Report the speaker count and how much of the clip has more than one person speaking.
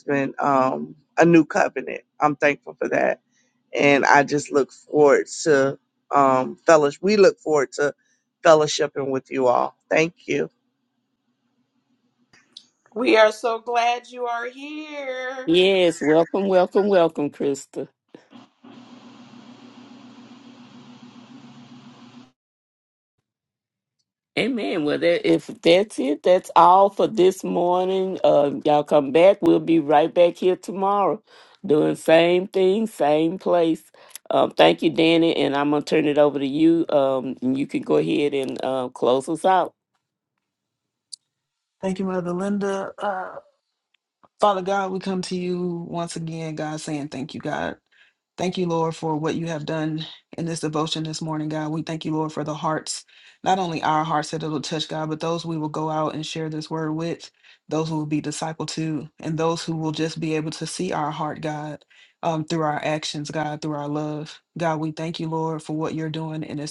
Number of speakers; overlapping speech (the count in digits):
4, under 1%